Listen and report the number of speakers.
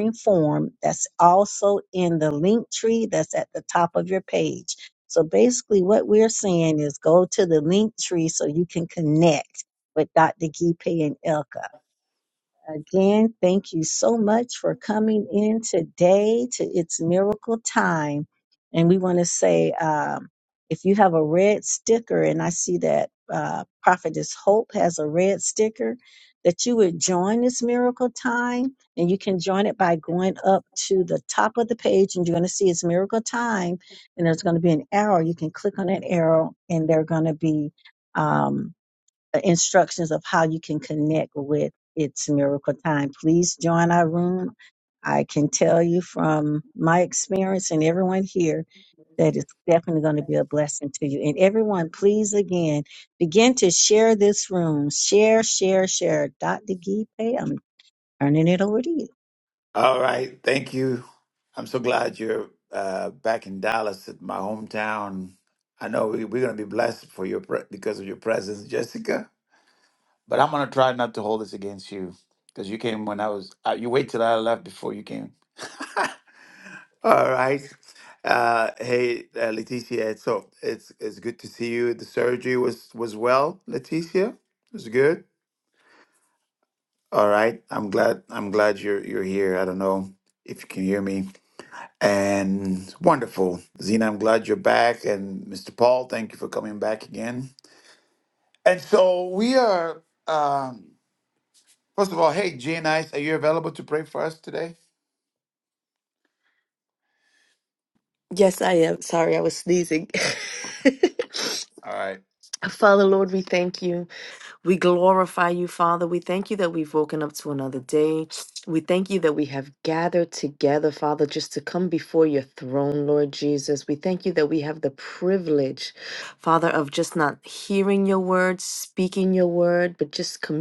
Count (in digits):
3